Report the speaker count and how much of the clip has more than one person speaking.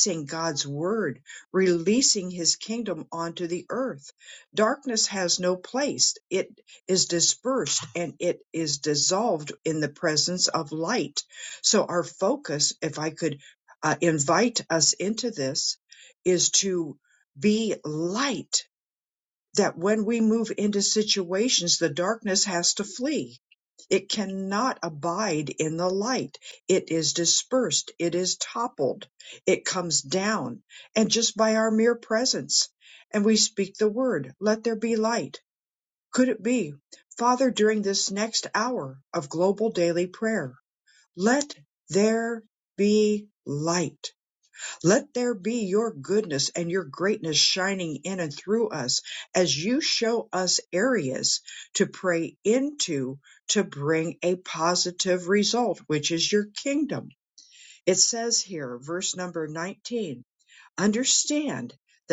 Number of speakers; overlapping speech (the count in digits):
1, no overlap